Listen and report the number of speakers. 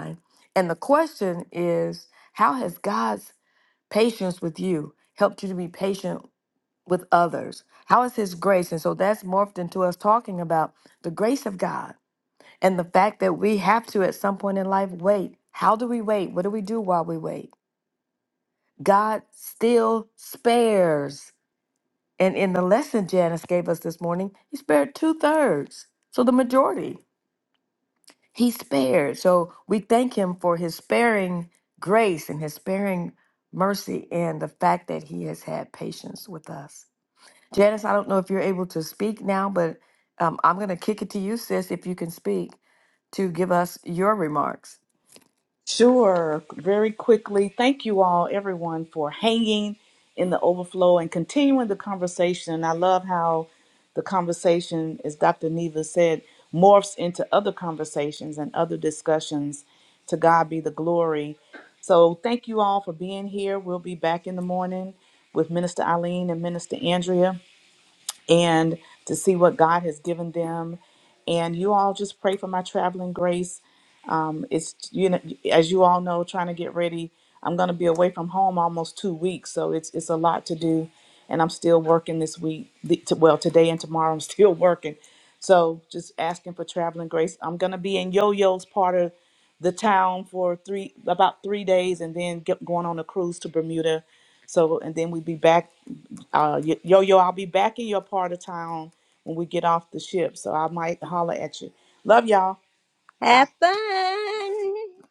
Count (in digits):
3